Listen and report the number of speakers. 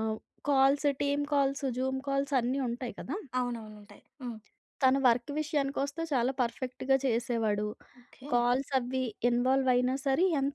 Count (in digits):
2